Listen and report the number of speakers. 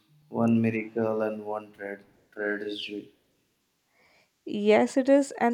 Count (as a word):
two